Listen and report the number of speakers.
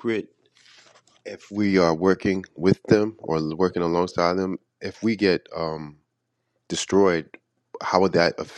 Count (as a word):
one